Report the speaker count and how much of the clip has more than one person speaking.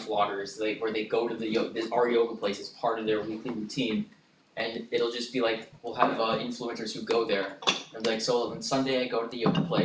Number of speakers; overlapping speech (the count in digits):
1, no overlap